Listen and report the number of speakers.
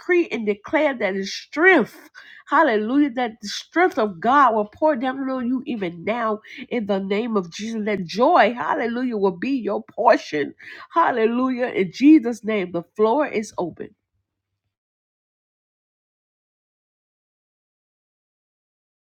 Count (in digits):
1